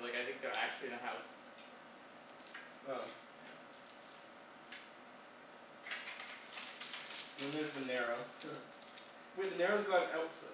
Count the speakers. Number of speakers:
2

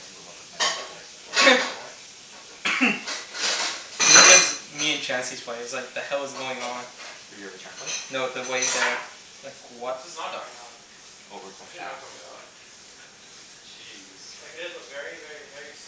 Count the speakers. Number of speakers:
4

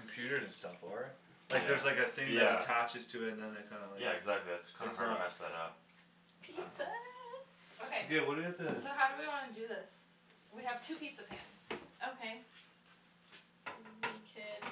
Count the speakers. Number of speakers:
4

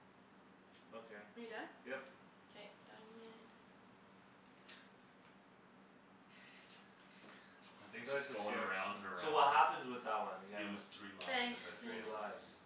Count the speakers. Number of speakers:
3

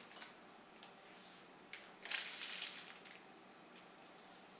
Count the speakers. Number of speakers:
0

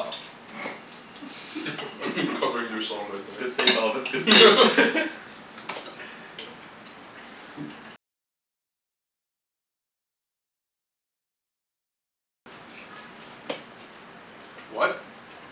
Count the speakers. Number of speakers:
2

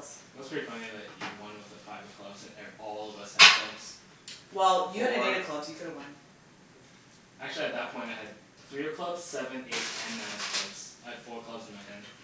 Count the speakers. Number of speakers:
2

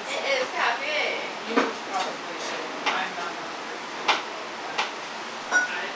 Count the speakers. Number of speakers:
2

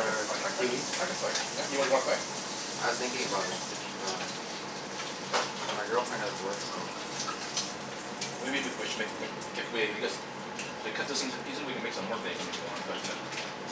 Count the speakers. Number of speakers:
2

